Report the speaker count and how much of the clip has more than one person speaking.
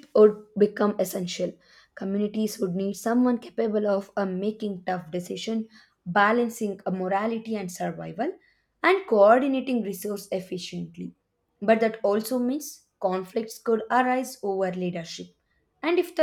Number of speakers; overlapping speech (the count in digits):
1, no overlap